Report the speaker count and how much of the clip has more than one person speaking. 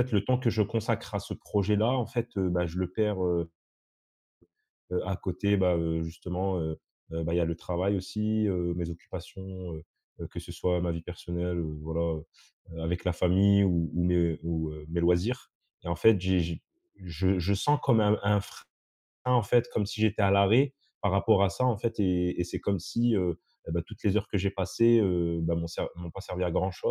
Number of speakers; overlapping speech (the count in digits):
1, no overlap